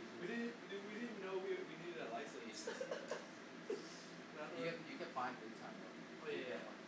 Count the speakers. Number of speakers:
2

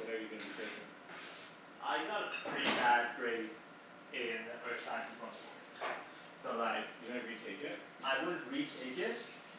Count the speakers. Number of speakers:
2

